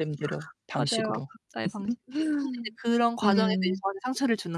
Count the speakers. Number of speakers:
2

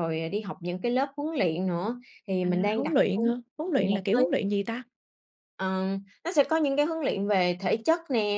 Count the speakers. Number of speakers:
2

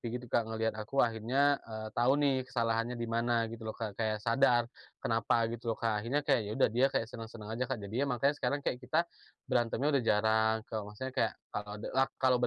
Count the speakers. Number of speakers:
1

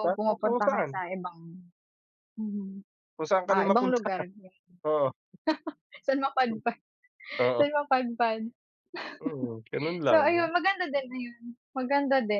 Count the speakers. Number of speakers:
2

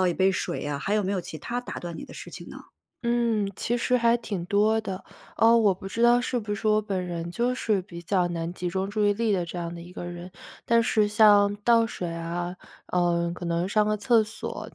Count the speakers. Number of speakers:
2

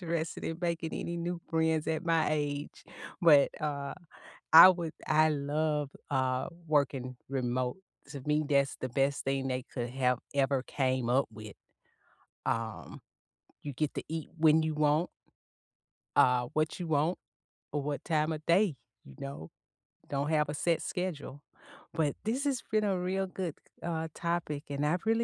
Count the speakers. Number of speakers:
1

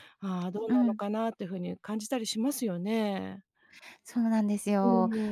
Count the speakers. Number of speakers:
2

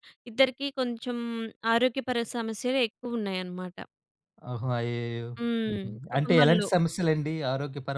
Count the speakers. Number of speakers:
2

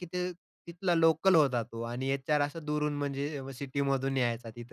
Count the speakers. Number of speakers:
1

